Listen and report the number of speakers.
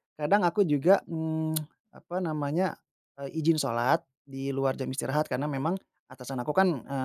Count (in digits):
1